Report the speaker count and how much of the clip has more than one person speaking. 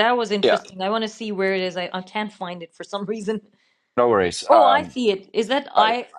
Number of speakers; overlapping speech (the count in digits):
2, about 13%